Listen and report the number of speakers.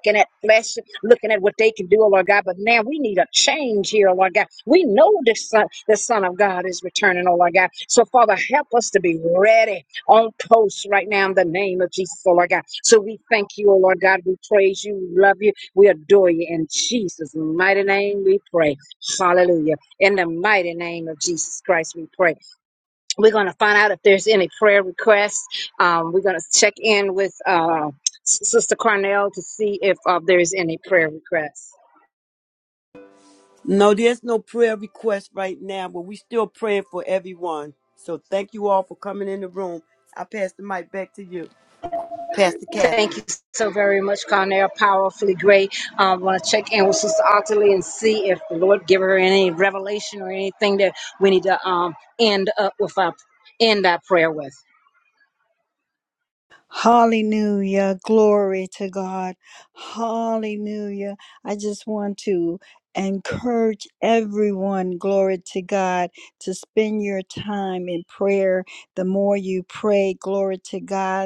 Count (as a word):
three